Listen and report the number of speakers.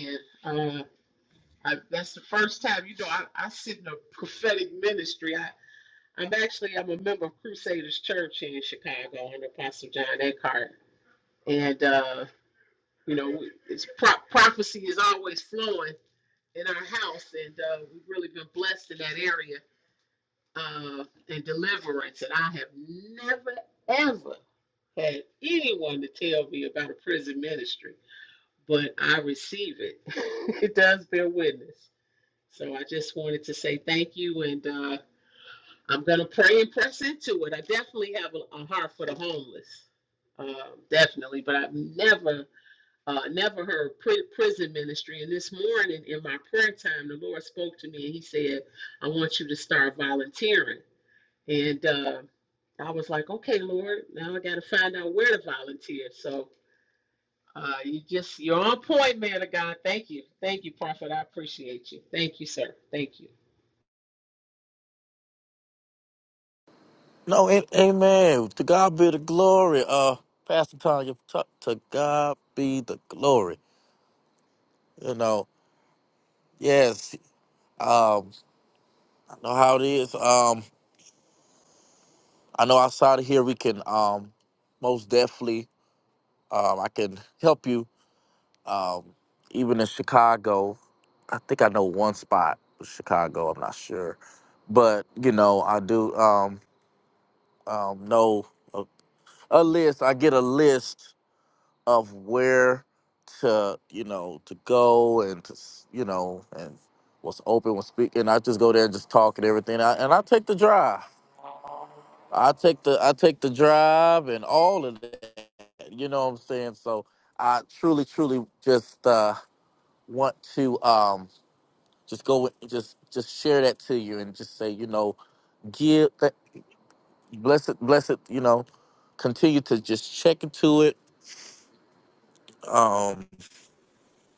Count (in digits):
2